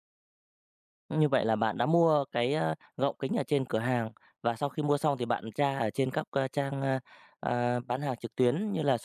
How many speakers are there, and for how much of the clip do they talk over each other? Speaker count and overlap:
1, no overlap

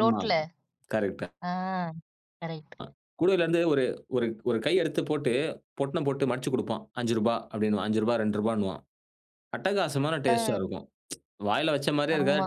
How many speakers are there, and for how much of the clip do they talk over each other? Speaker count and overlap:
2, about 8%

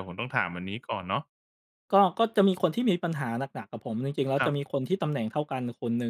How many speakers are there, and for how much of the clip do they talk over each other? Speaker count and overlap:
2, about 3%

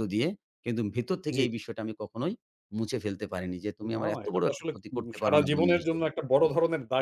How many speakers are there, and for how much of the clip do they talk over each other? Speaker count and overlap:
2, about 32%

